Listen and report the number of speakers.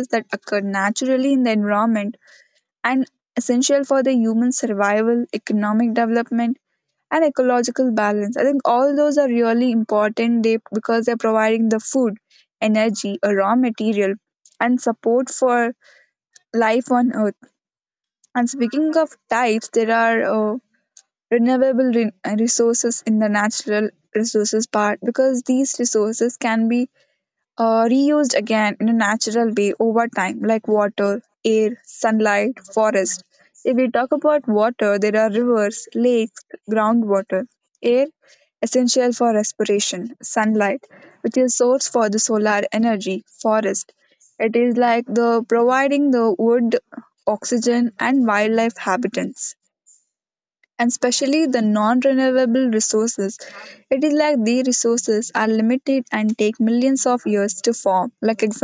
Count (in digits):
1